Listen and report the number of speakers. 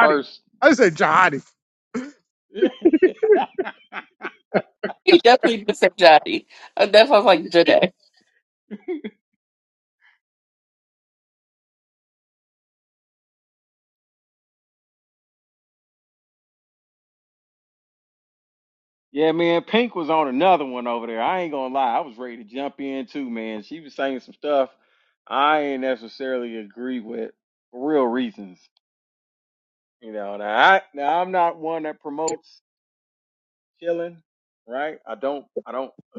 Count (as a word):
three